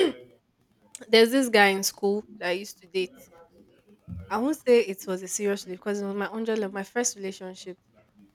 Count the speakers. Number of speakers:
1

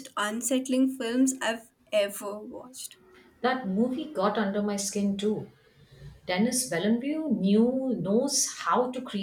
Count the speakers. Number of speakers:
2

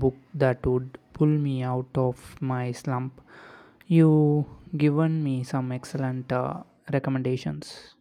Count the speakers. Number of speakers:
1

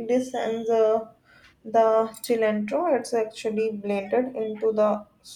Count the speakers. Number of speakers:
1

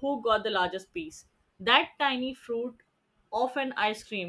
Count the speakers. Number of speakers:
1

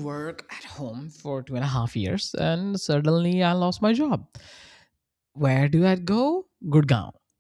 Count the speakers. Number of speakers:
1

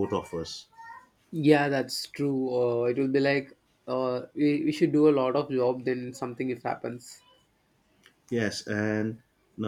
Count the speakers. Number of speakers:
2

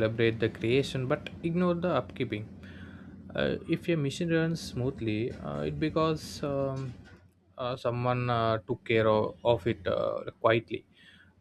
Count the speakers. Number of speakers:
1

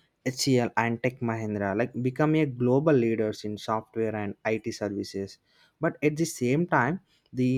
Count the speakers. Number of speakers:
1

